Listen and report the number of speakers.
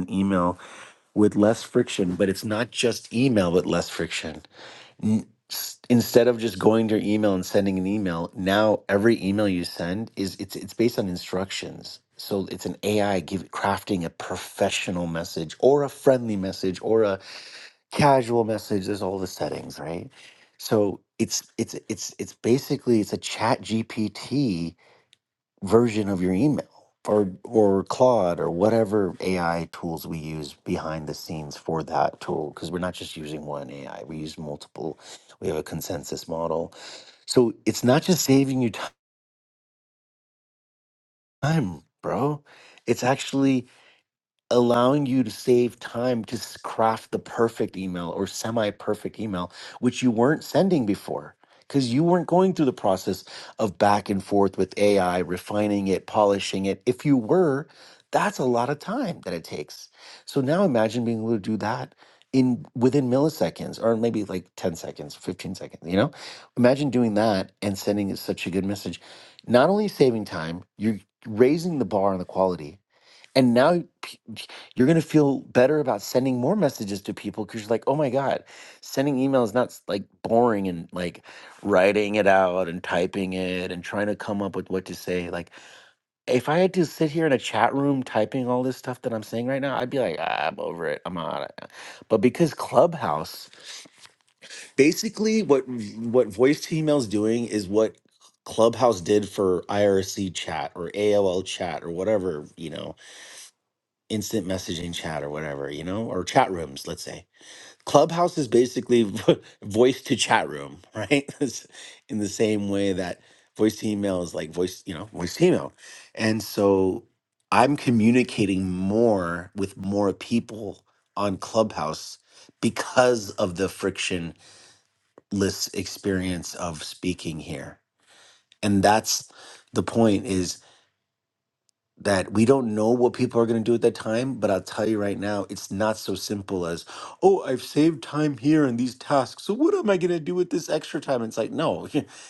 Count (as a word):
one